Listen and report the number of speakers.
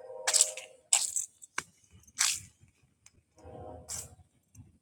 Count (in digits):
0